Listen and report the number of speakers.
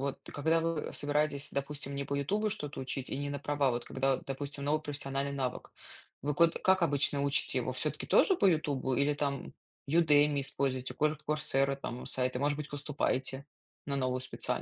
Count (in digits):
1